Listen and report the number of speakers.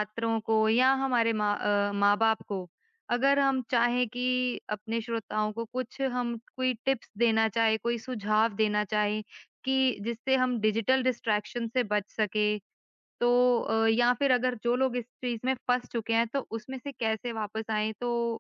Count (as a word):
one